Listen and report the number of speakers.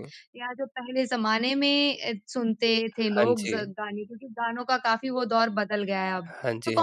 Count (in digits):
2